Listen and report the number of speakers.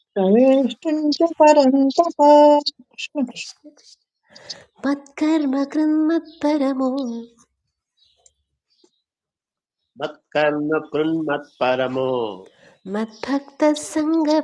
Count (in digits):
3